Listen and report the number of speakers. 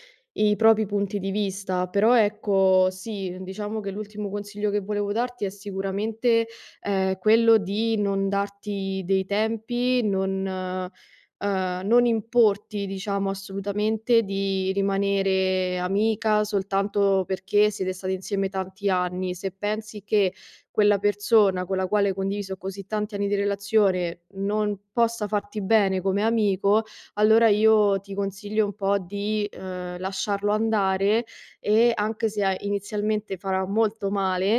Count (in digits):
1